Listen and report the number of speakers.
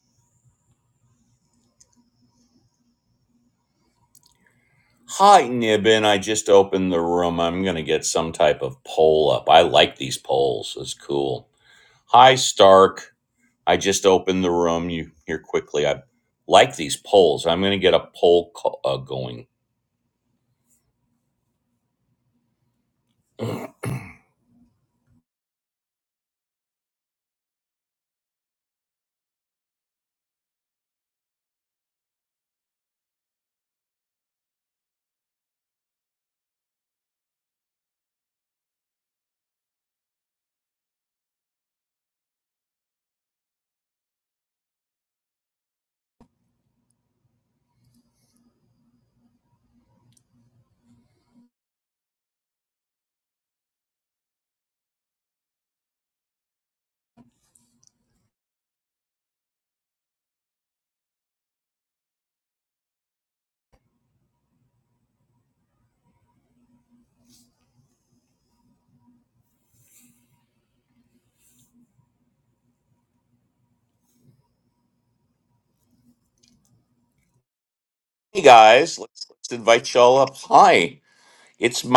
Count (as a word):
one